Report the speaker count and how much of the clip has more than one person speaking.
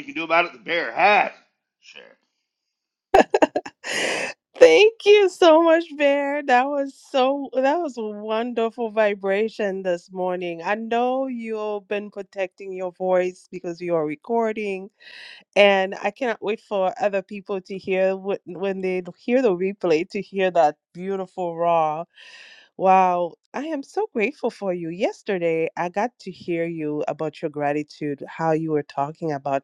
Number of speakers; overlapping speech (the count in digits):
2, no overlap